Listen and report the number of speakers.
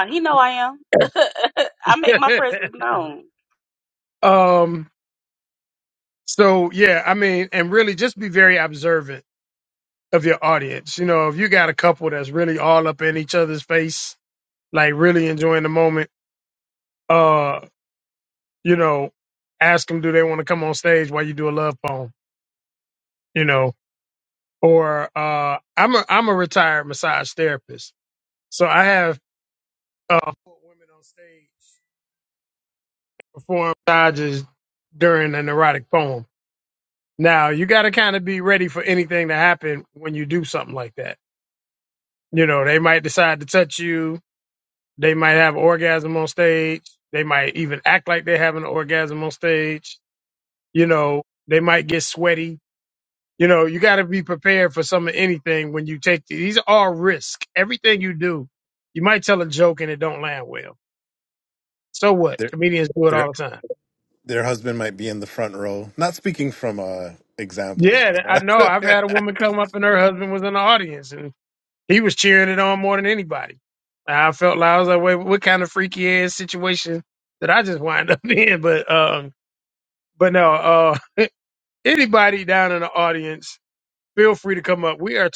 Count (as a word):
three